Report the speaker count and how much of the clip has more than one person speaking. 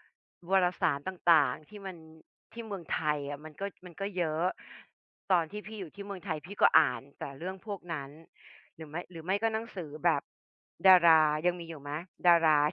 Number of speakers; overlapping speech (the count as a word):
one, no overlap